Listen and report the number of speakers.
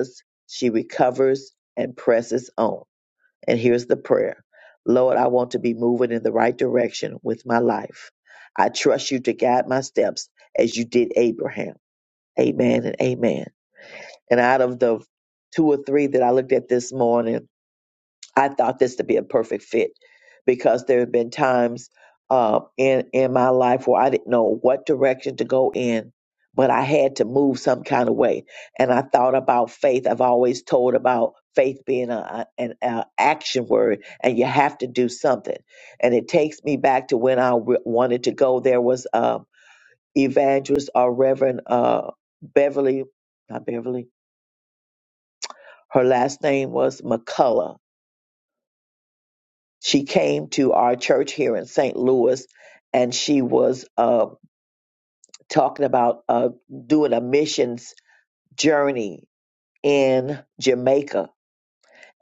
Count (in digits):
1